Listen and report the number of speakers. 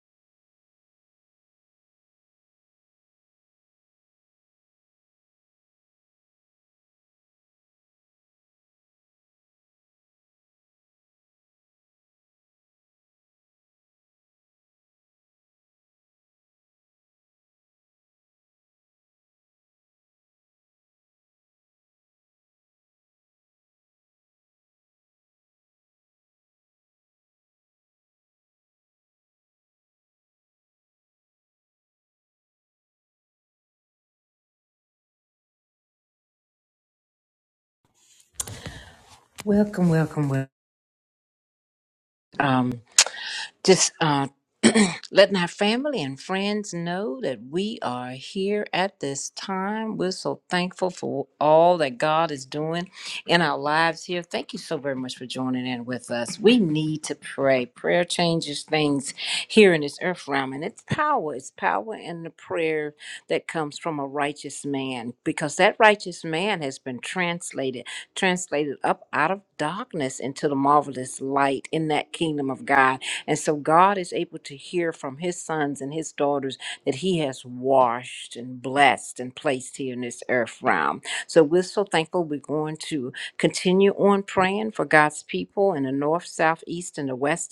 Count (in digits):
1